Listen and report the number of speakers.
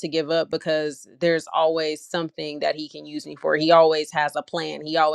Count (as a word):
one